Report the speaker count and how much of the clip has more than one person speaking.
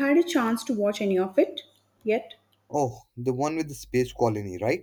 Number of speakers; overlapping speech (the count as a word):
two, no overlap